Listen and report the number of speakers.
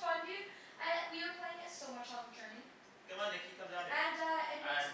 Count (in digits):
2